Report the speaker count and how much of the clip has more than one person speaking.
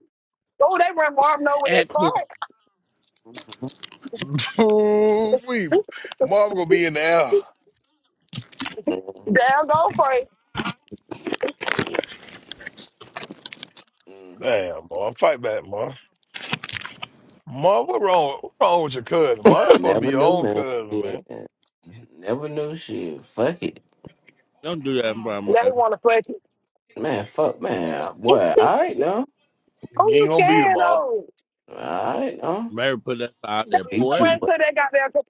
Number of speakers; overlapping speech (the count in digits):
4, about 12%